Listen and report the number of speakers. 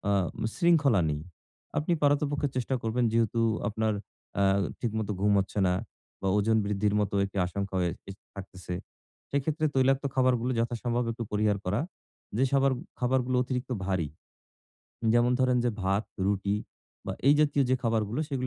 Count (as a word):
one